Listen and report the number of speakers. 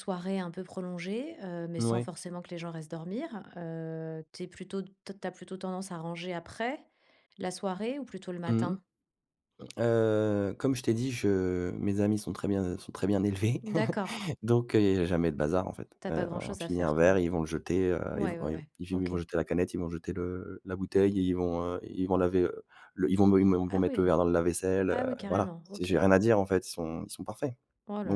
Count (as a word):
two